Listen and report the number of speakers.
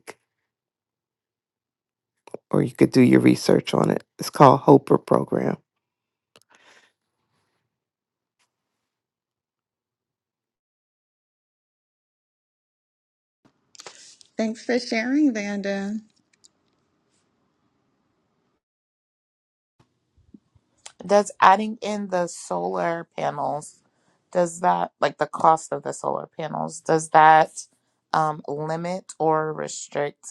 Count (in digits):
3